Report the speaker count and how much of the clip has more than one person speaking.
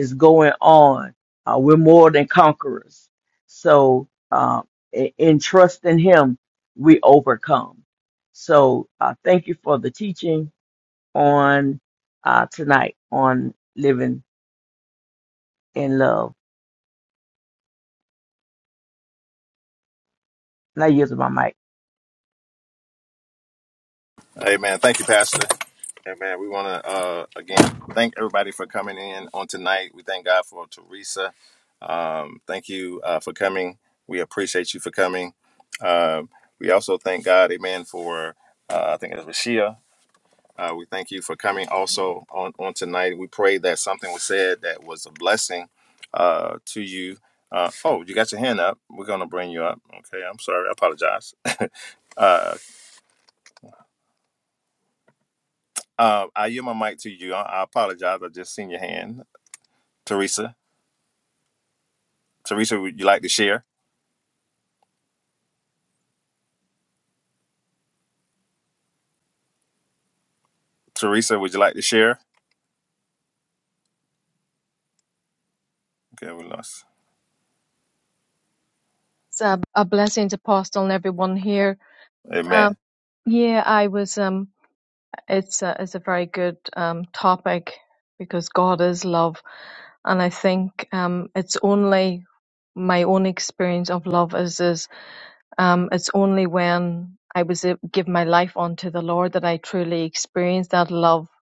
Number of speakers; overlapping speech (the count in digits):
3, under 1%